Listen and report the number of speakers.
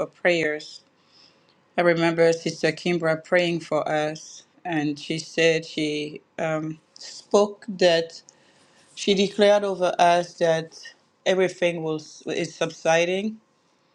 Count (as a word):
one